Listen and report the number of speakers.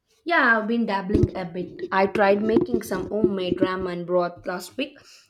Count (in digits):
1